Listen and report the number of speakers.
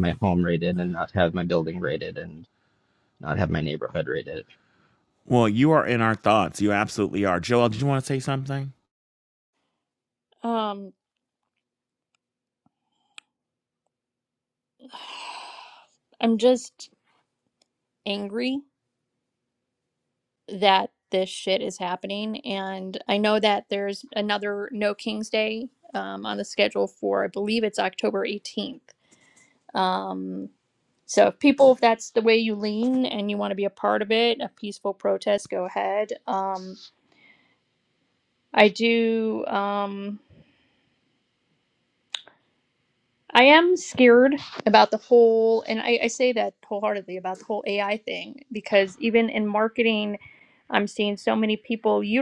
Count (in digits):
3